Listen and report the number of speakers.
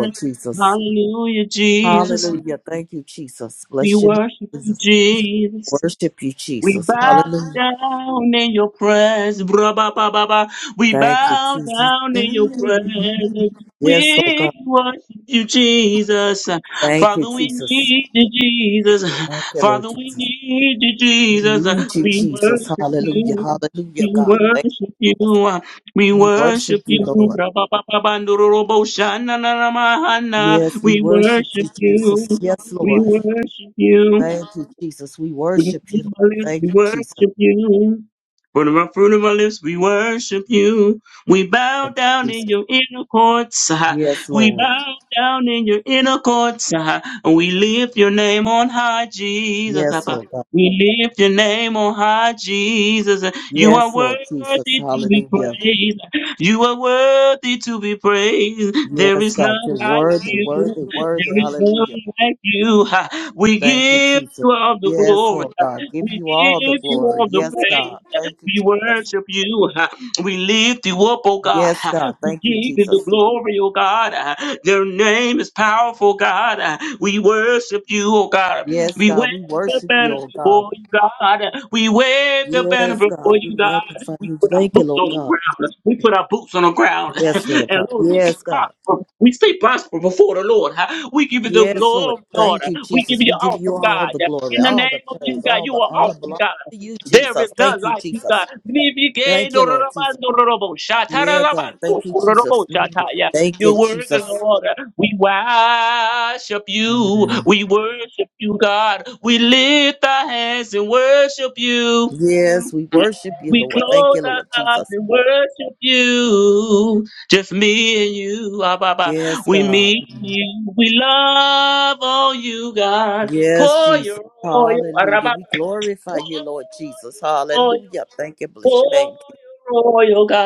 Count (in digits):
2